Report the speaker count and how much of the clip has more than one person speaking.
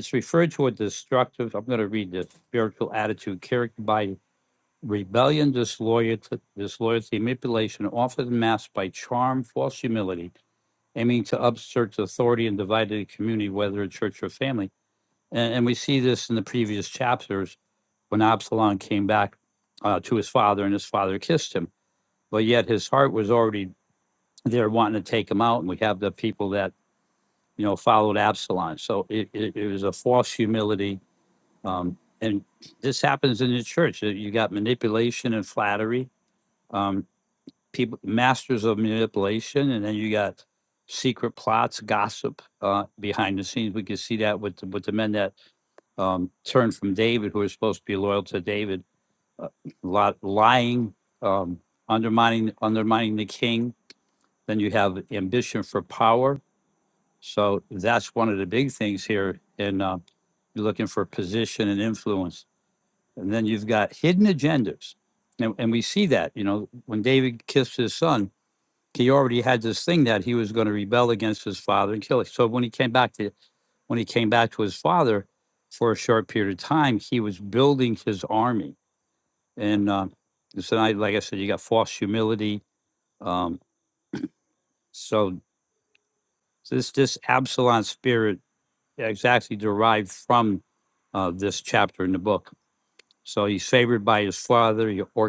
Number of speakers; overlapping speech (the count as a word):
one, no overlap